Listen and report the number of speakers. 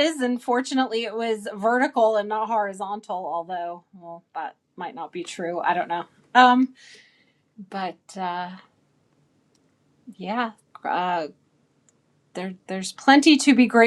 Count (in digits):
1